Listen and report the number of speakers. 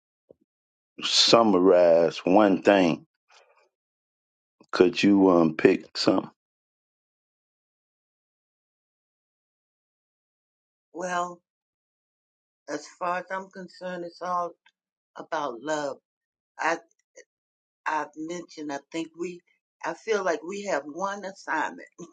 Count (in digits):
2